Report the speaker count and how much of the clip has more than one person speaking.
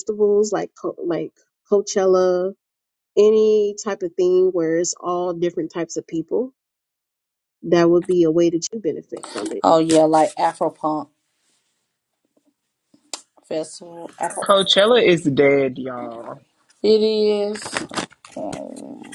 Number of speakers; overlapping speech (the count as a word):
three, under 1%